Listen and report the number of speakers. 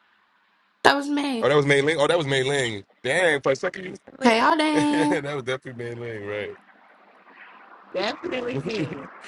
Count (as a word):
three